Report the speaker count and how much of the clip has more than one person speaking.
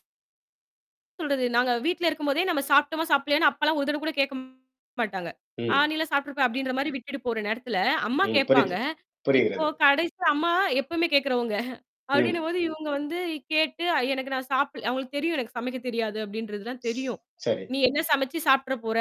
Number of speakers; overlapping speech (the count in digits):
2, about 6%